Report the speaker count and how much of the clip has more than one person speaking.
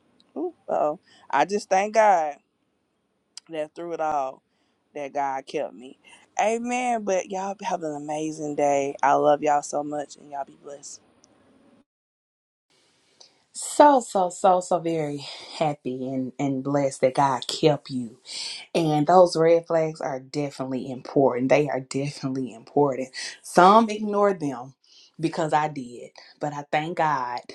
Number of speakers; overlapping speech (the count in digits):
2, no overlap